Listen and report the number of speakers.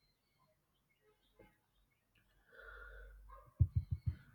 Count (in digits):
0